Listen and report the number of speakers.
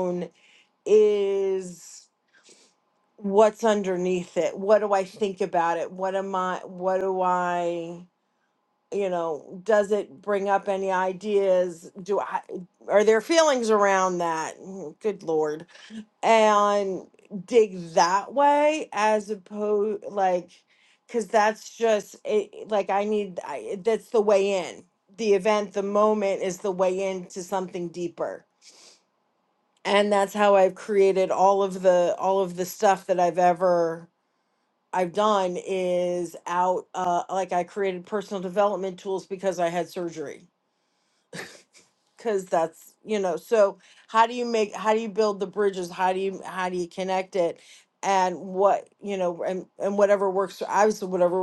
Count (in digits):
1